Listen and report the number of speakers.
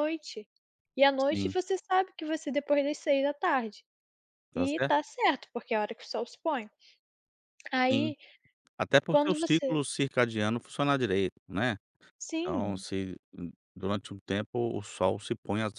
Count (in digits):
2